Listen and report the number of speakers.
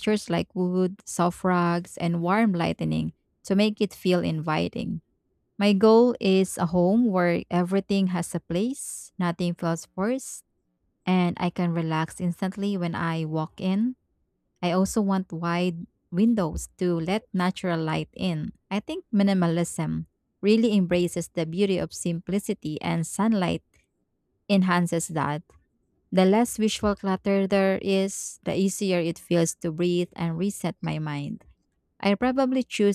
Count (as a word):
one